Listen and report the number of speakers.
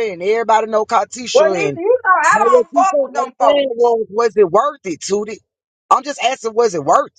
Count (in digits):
2